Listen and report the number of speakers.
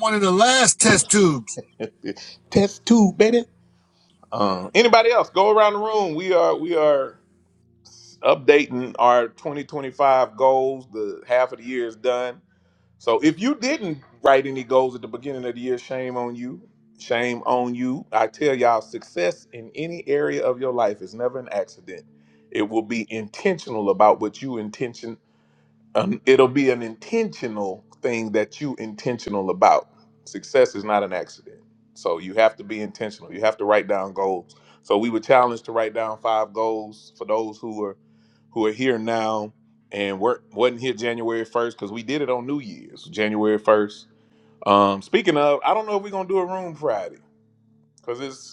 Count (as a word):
two